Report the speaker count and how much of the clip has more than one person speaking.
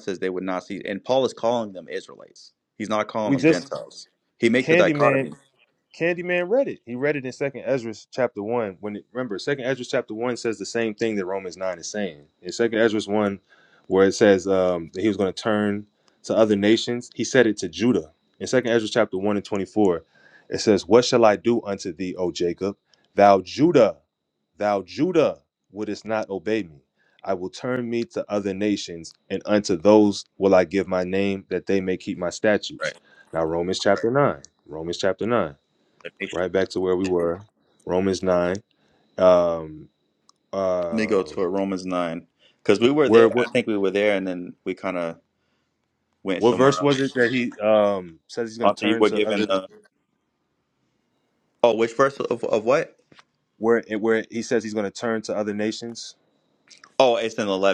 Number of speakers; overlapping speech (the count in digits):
2, about 6%